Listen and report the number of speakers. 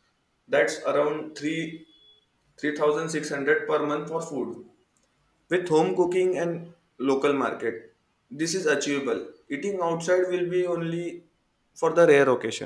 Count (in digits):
1